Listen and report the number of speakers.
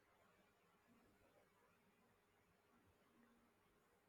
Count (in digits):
0